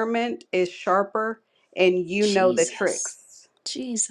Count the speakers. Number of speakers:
2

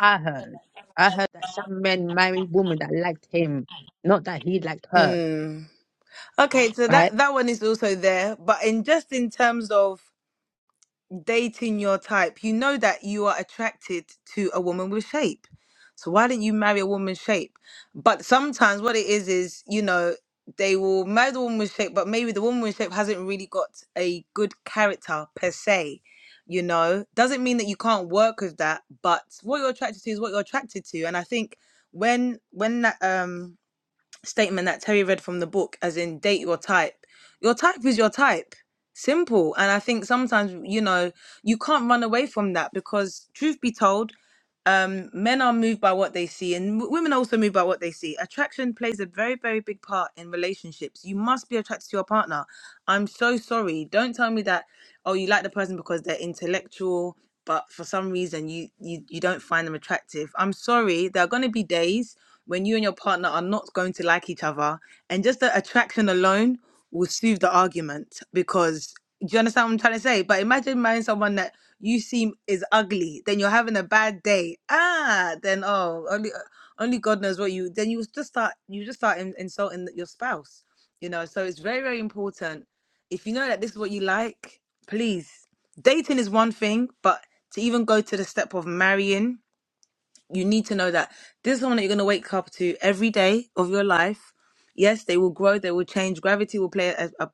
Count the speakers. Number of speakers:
2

